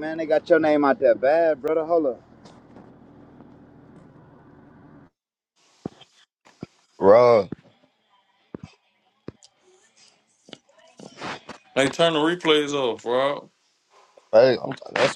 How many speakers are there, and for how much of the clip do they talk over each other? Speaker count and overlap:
three, no overlap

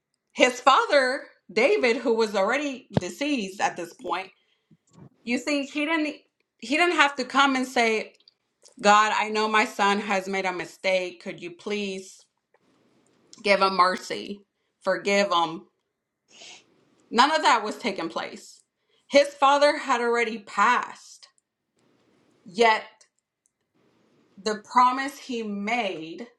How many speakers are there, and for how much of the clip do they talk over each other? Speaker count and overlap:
one, no overlap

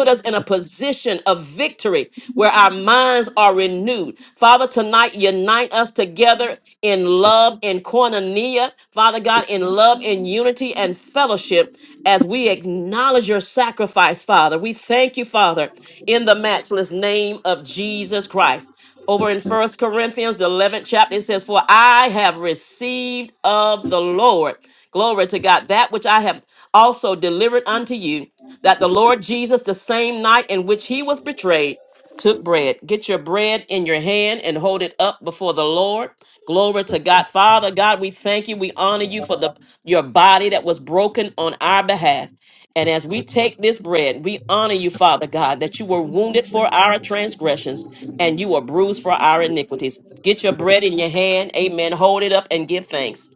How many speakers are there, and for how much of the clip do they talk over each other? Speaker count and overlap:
one, no overlap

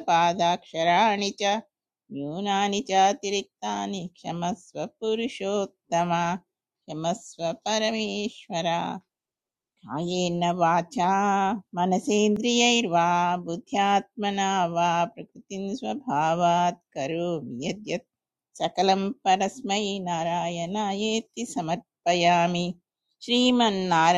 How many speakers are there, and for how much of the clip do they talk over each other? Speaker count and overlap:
one, no overlap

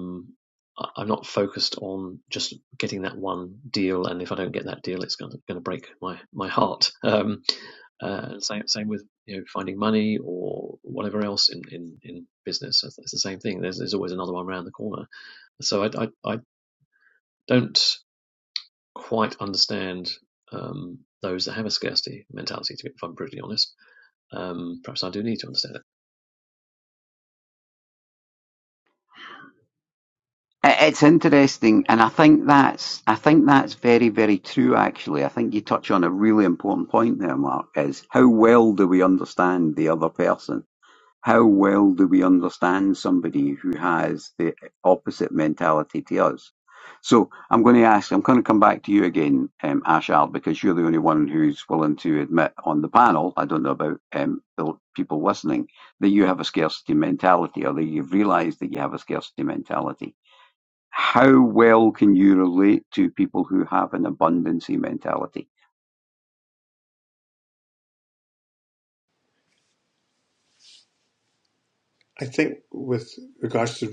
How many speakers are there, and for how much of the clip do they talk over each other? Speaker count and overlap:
three, no overlap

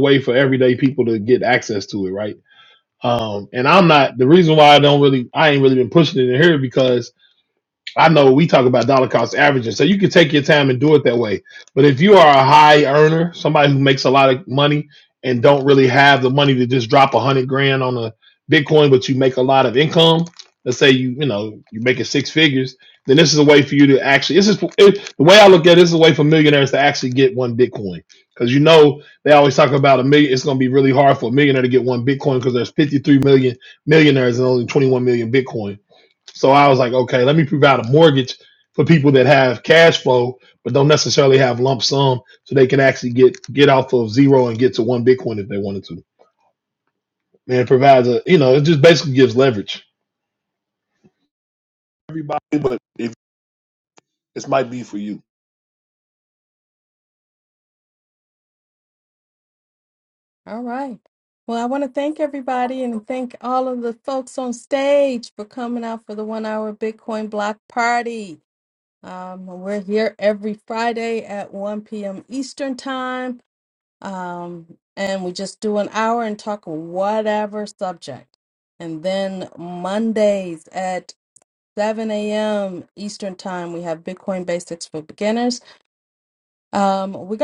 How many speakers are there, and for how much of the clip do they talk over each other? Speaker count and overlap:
two, no overlap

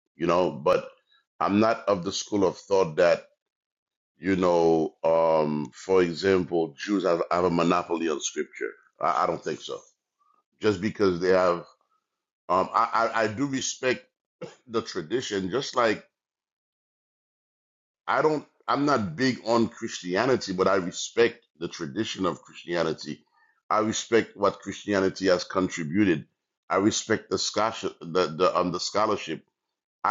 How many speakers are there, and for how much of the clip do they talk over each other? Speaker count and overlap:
one, no overlap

